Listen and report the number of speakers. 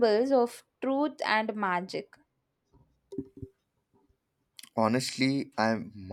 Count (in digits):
2